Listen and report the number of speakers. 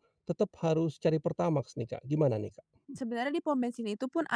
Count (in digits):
2